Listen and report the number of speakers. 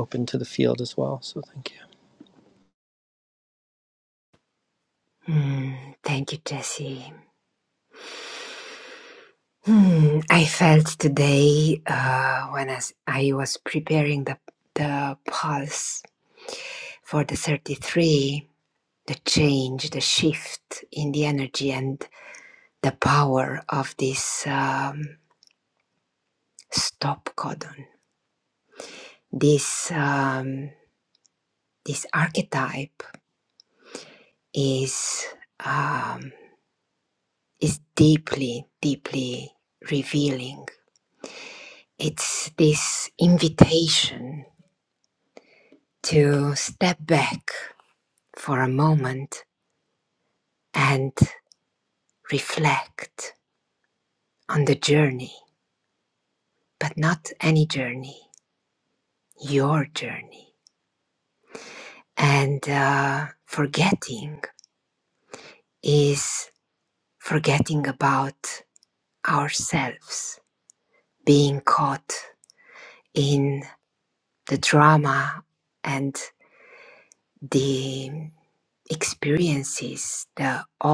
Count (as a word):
two